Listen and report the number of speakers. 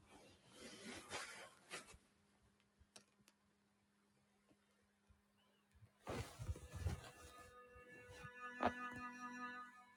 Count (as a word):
zero